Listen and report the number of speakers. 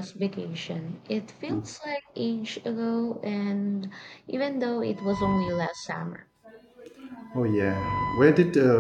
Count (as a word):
two